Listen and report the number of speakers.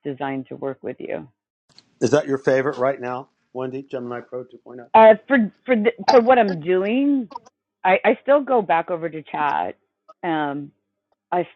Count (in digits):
2